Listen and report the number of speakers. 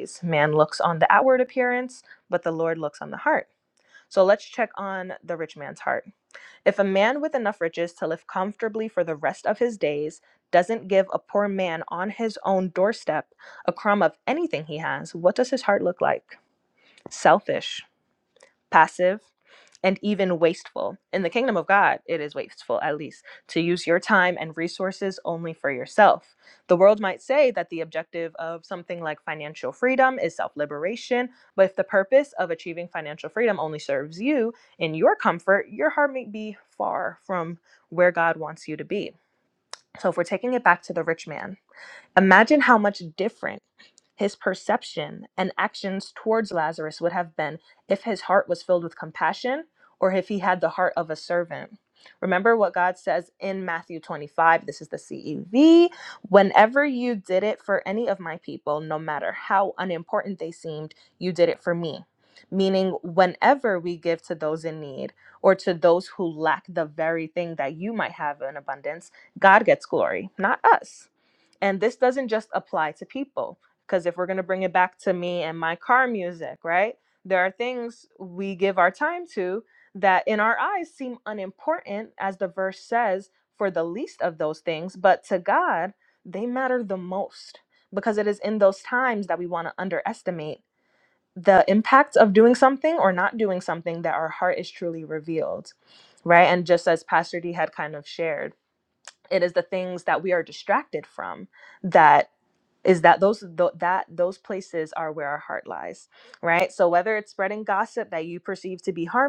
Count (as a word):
one